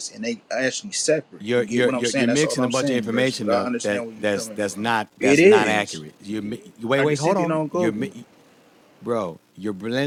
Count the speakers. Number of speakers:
2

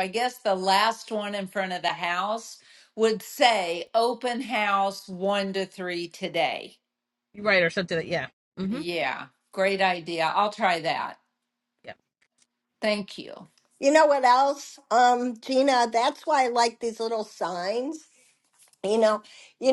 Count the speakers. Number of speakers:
3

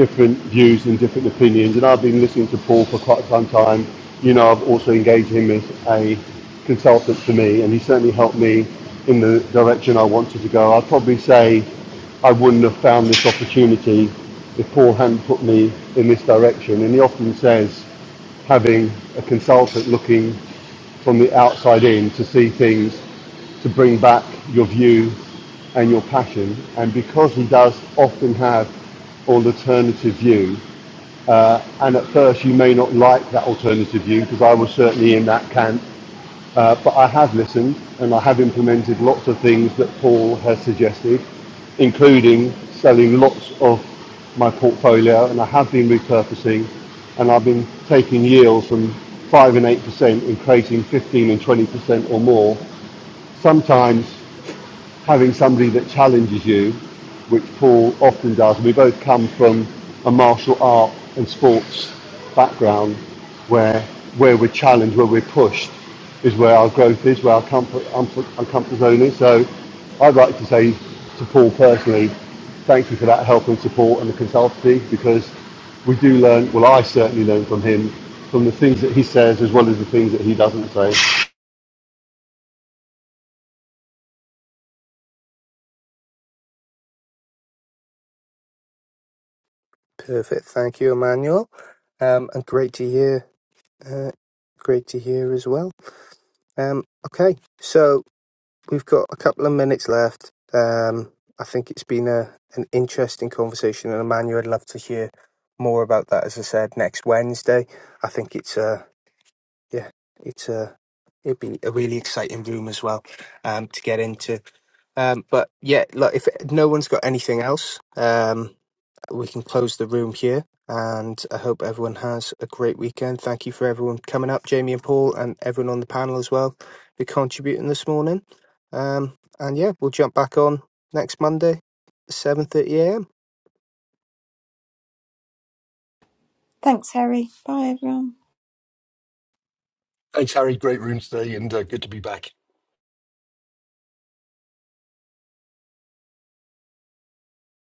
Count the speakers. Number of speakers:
4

